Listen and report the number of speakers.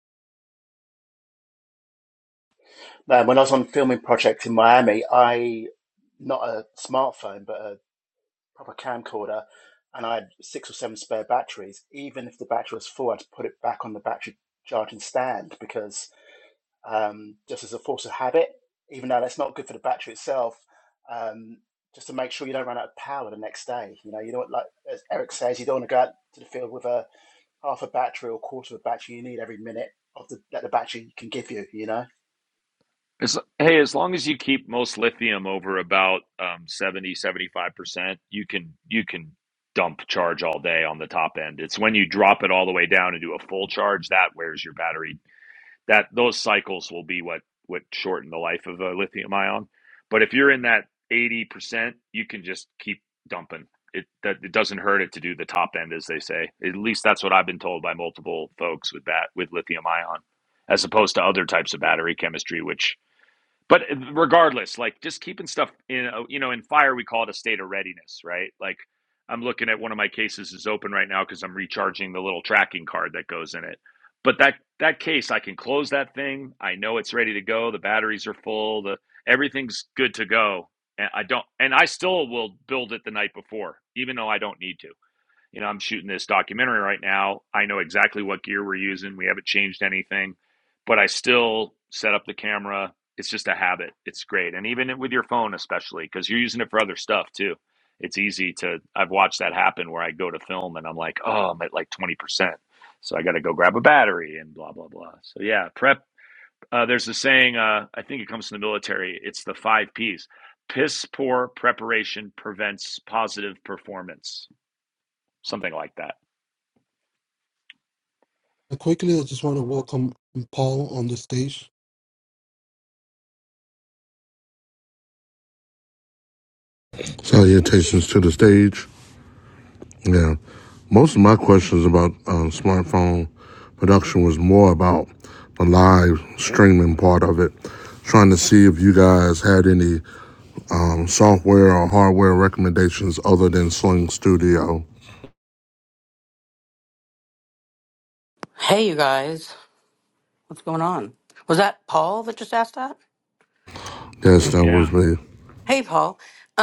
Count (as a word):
five